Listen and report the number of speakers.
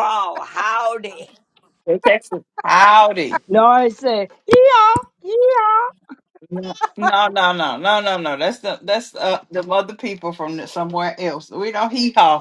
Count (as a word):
three